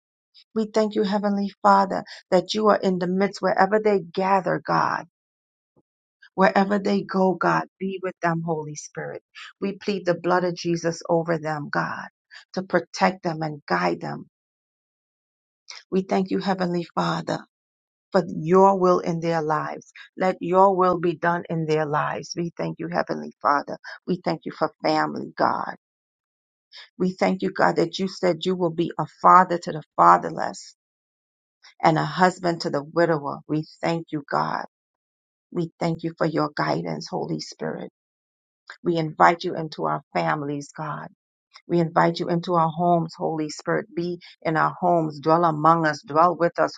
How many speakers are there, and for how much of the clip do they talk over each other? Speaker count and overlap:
1, no overlap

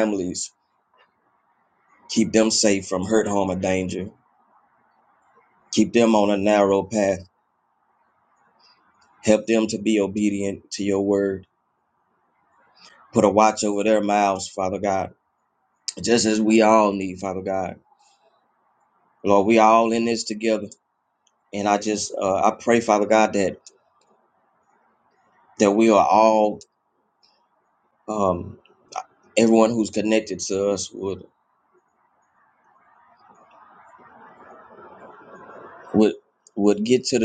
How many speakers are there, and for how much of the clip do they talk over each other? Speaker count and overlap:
1, no overlap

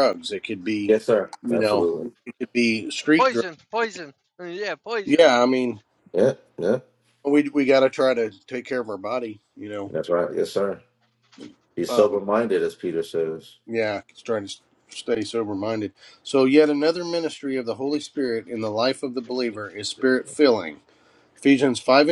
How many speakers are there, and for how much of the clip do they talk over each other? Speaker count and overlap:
3, about 6%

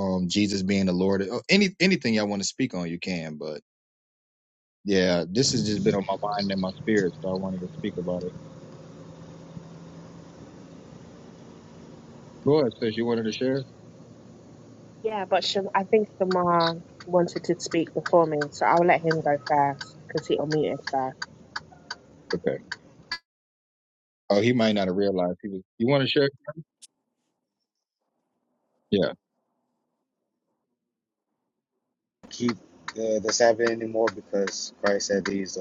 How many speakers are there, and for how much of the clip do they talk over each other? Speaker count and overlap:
3, no overlap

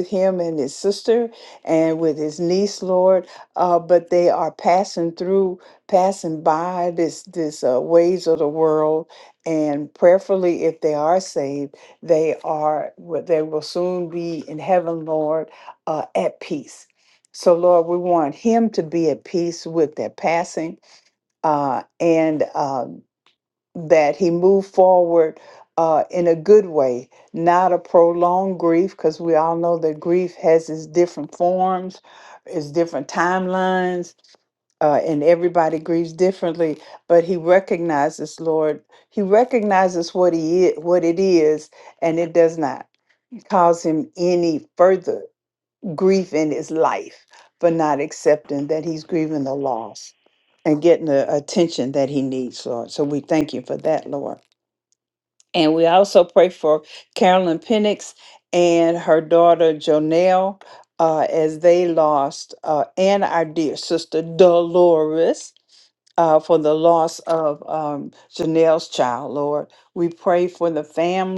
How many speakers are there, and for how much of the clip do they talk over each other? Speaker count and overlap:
1, no overlap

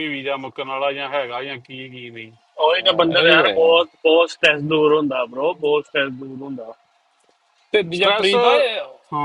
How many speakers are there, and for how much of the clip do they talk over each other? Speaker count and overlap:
3, about 17%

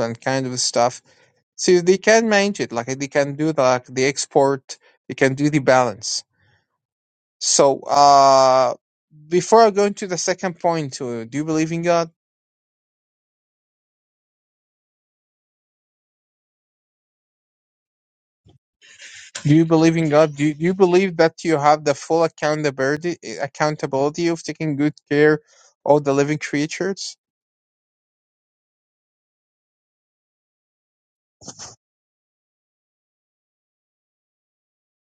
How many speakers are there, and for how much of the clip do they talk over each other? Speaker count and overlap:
1, no overlap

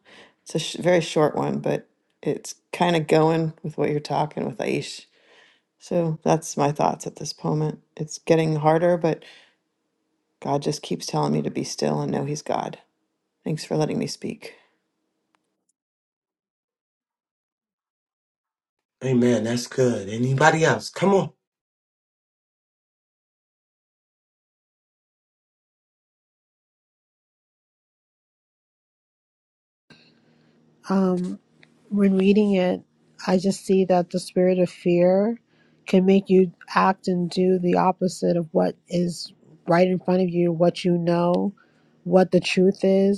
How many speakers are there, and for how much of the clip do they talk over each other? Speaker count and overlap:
3, no overlap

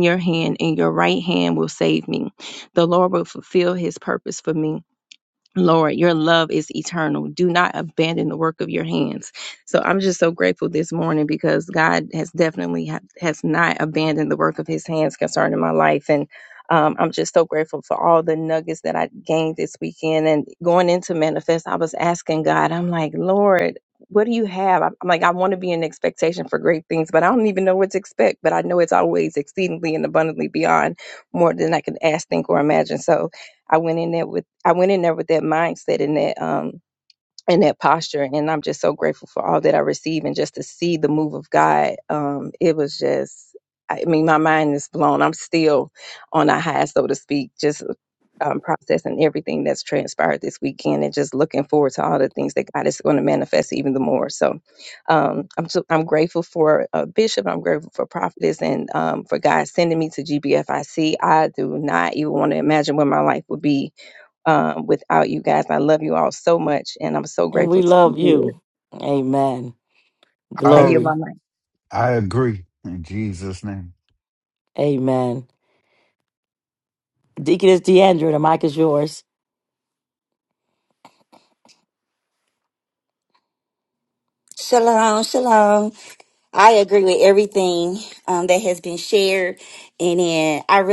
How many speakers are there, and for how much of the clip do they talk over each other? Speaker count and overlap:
4, about 2%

